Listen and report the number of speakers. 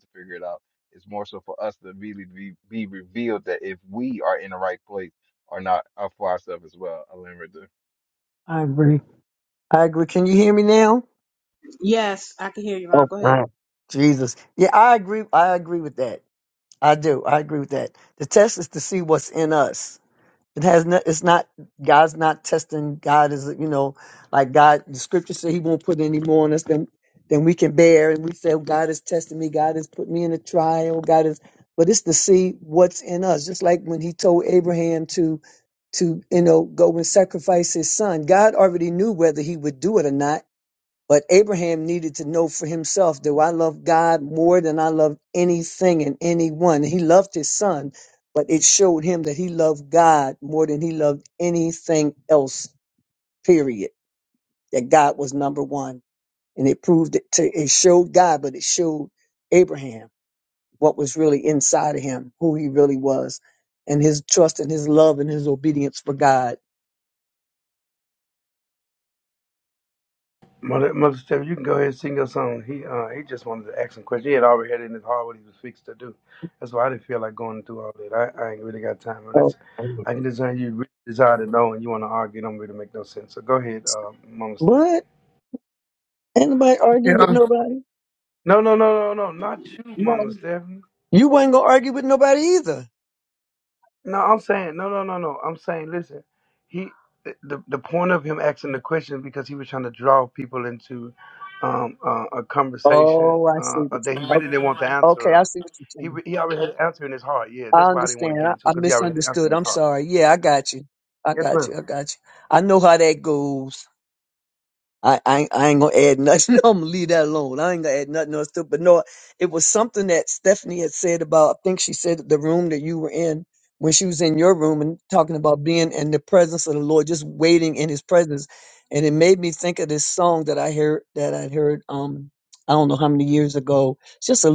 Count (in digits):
4